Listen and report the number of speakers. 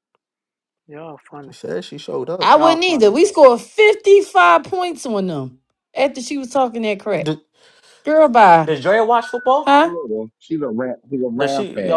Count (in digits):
4